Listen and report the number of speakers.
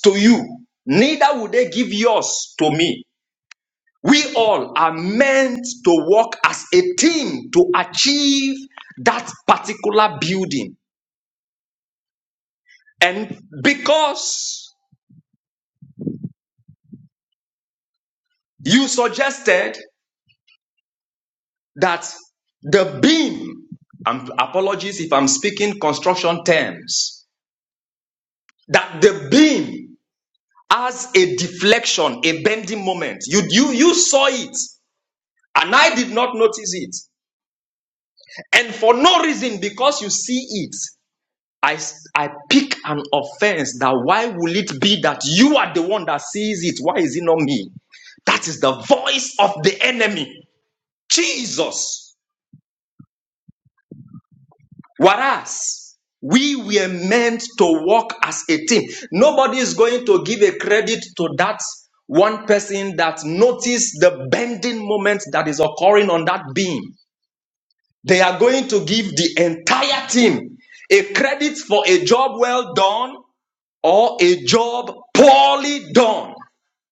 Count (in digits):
1